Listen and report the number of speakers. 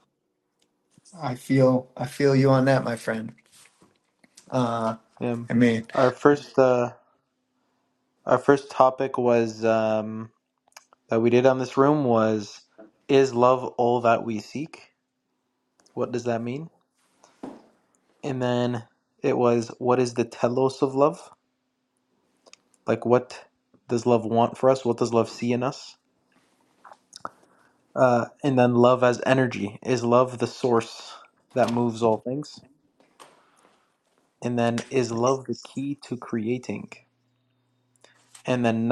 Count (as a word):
two